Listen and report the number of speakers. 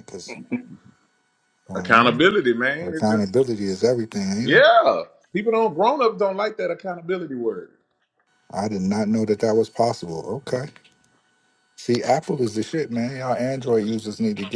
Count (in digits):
2